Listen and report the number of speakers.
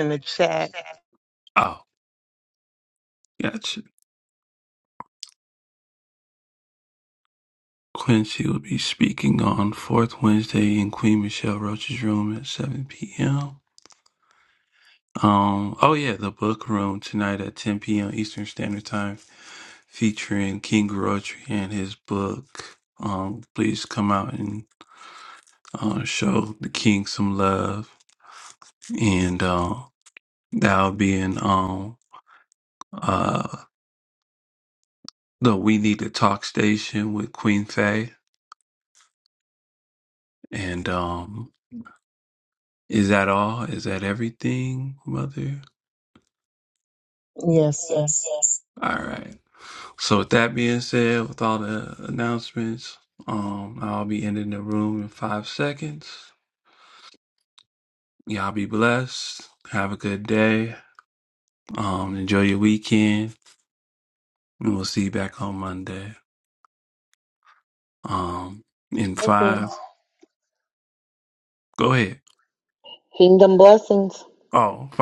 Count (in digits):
3